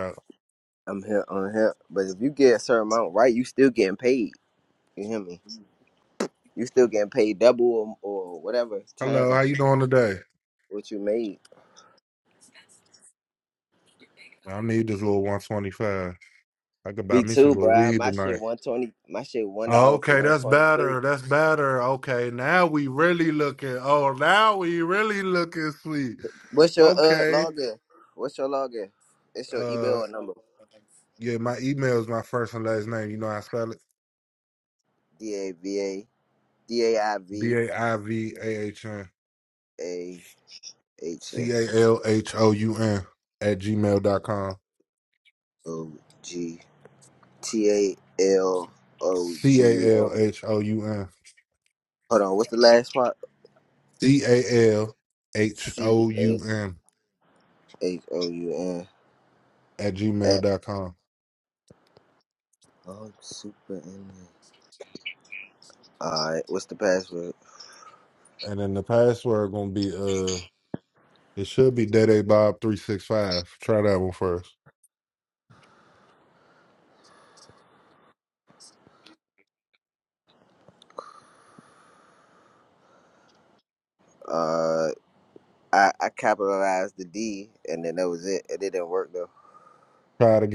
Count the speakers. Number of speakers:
two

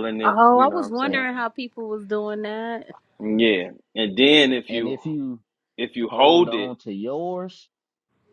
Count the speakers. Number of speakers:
three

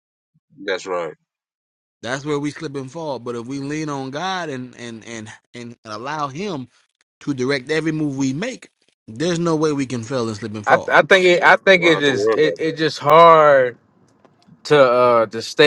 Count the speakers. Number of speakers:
three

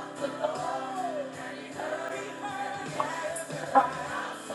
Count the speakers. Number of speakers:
zero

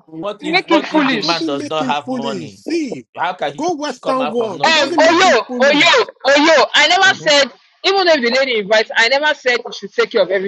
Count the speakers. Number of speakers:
three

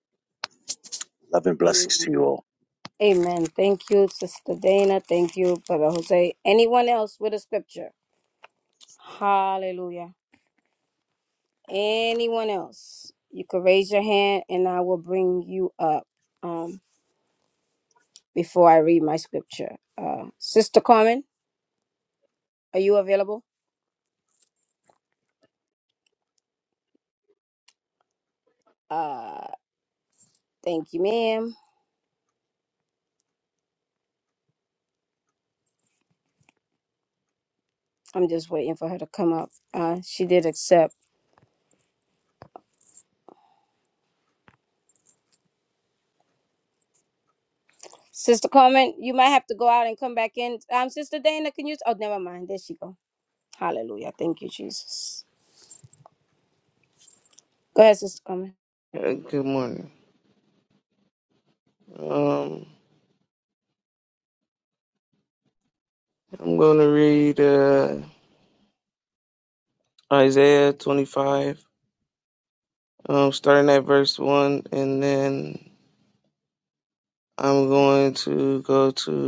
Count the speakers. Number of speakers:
three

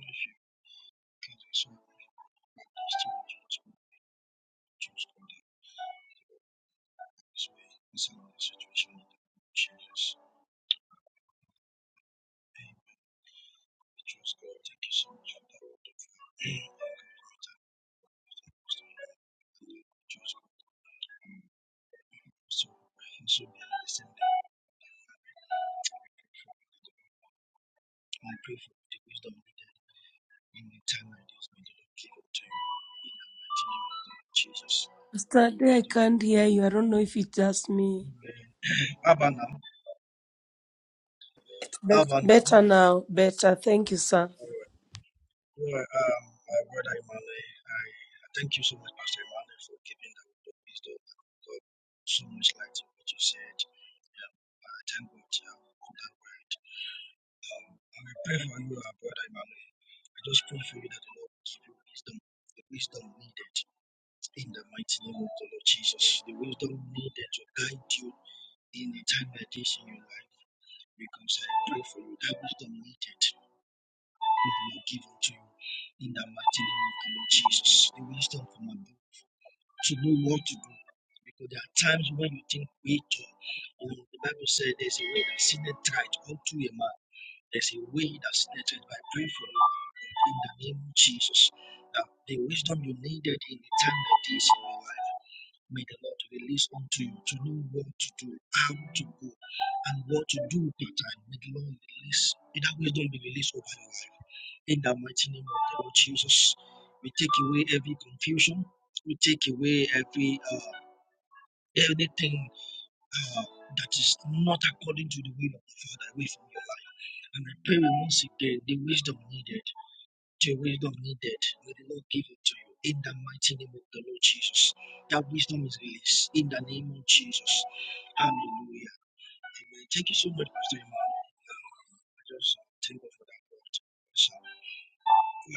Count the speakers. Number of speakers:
two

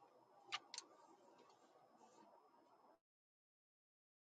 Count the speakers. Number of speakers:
zero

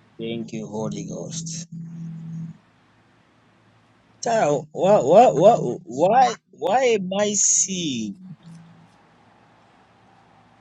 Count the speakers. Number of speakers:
one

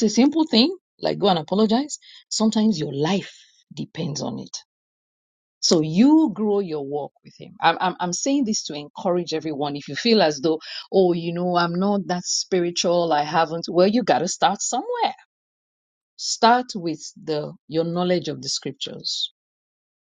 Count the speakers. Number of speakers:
one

